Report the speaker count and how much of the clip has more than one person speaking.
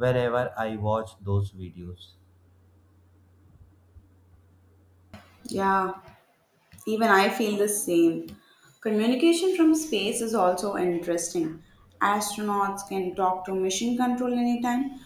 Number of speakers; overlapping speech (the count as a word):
two, no overlap